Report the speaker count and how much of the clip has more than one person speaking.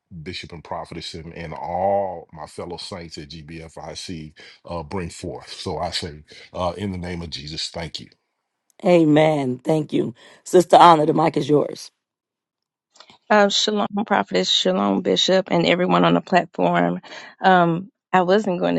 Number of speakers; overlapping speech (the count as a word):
three, no overlap